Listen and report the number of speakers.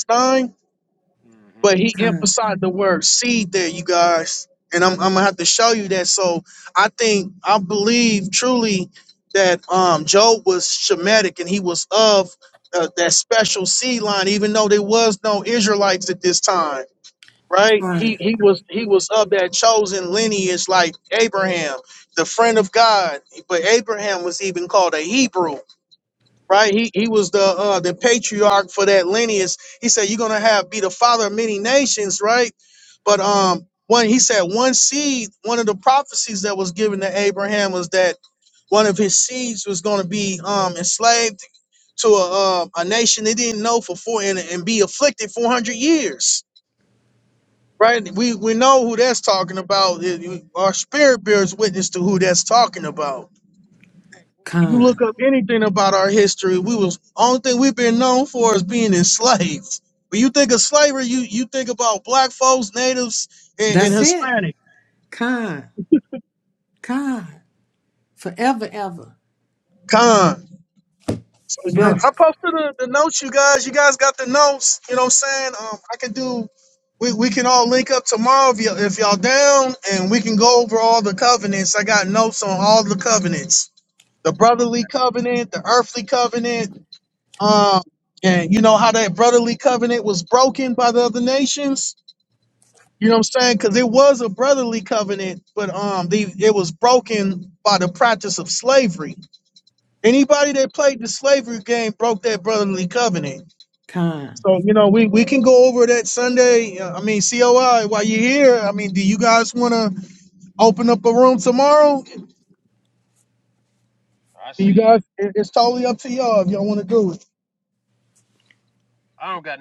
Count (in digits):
3